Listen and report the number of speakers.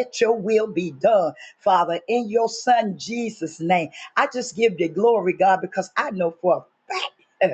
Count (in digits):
1